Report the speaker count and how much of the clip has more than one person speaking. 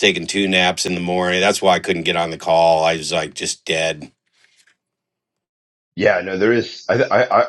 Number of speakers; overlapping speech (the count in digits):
2, no overlap